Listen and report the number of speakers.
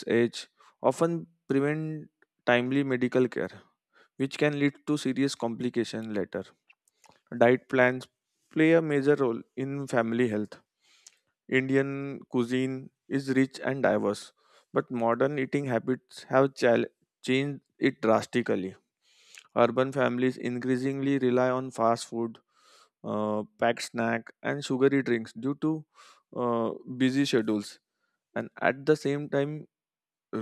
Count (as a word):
one